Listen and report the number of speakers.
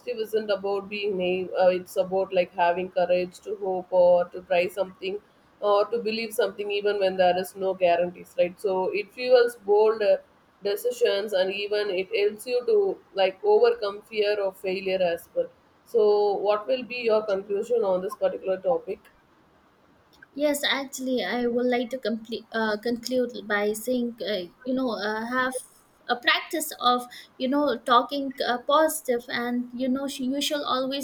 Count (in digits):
2